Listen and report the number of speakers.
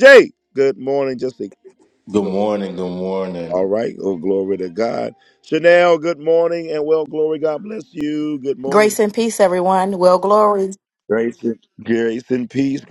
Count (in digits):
3